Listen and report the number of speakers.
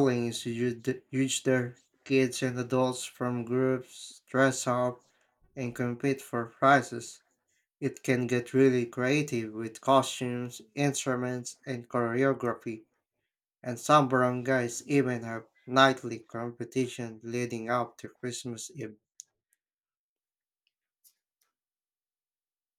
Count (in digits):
1